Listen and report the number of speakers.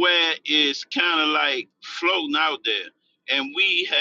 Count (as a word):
one